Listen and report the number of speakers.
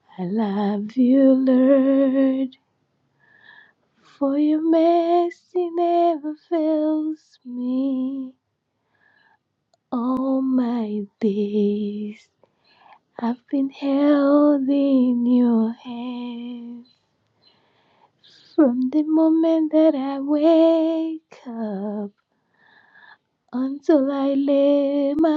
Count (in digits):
1